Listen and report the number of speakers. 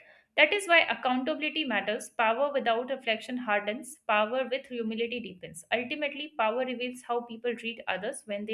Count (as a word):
one